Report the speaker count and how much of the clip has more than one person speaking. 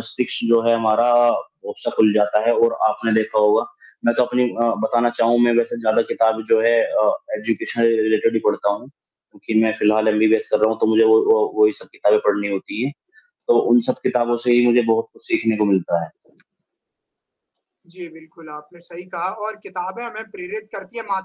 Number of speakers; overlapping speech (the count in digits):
2, no overlap